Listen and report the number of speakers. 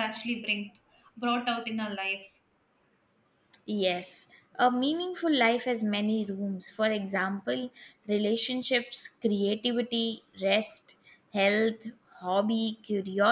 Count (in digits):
2